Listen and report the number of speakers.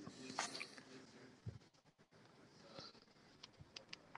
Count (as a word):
zero